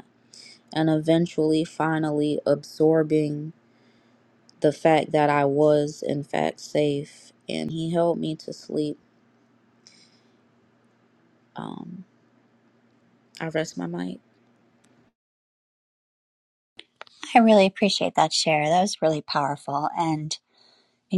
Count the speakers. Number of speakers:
2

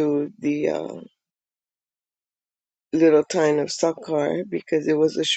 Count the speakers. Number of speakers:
1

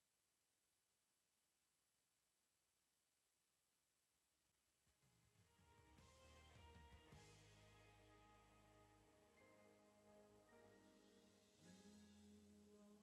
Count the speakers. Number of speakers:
0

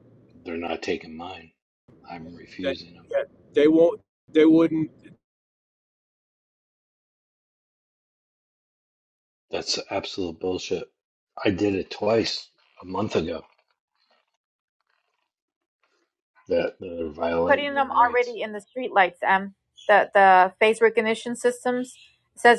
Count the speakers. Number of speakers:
3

